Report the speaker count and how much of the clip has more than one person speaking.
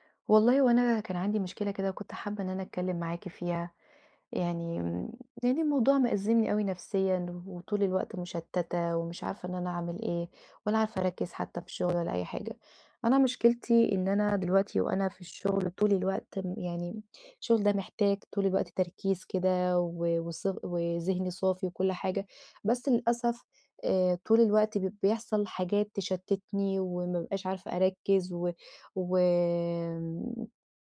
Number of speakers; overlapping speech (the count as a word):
one, no overlap